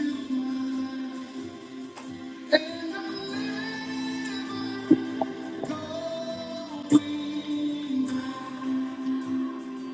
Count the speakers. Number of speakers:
0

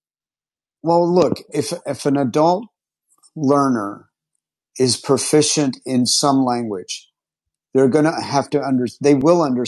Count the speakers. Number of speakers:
1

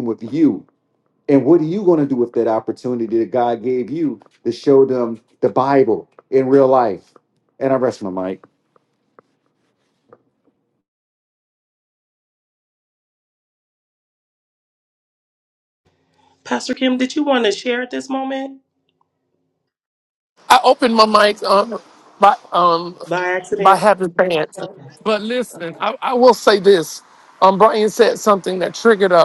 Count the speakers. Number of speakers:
3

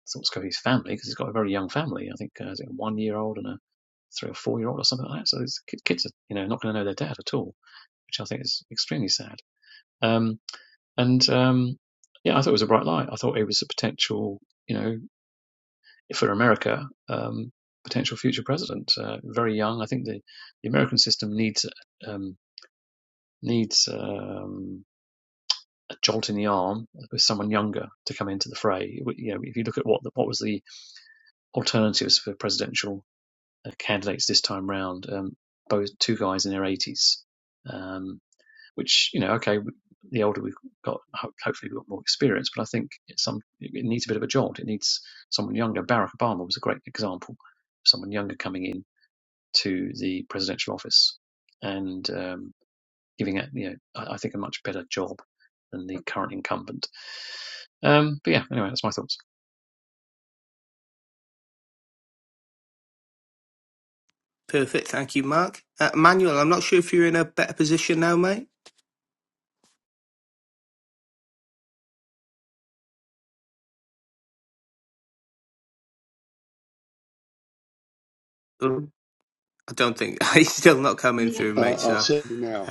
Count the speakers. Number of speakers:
3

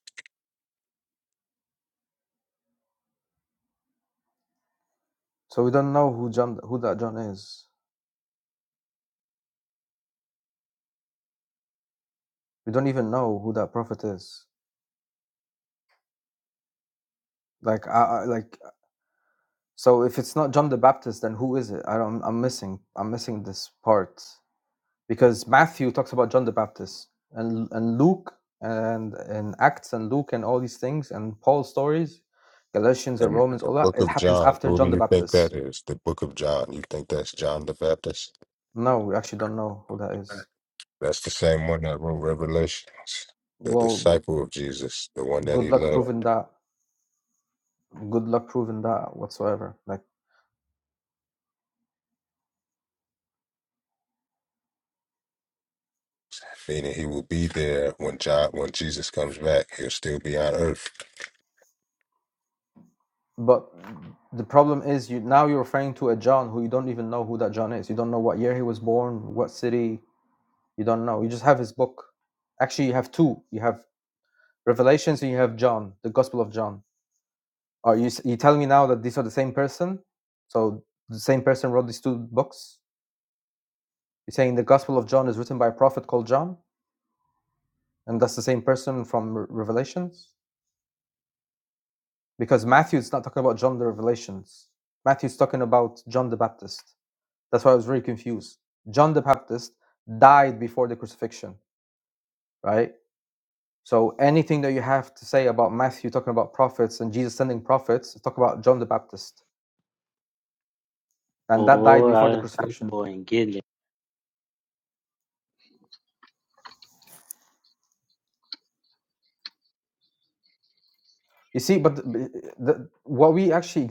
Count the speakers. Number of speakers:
3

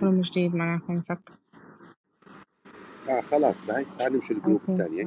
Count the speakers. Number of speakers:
2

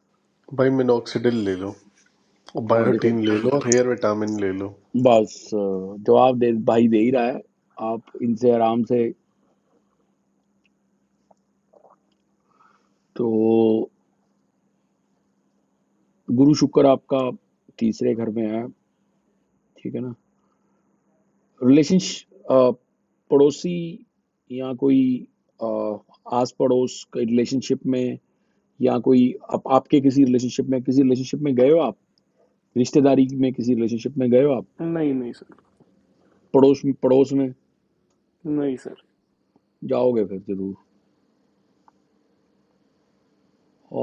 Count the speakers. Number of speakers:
3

